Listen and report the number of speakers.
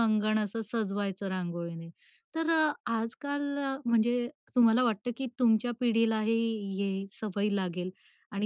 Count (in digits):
1